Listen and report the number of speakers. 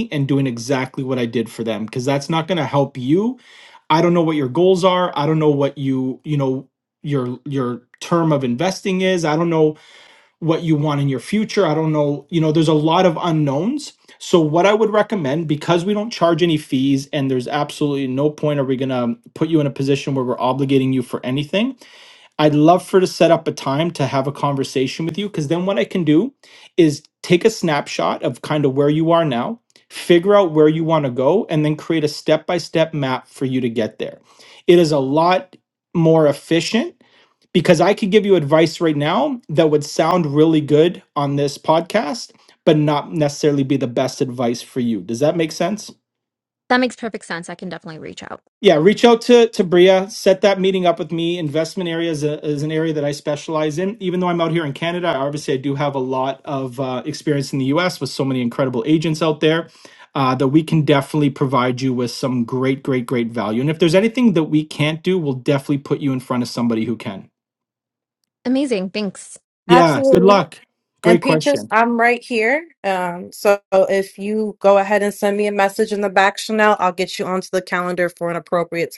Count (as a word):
three